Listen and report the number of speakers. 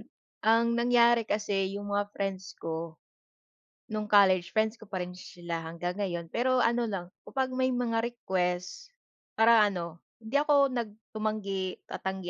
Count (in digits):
1